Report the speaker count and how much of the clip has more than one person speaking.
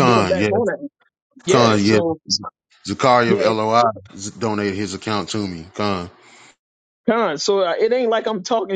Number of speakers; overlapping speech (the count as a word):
two, about 16%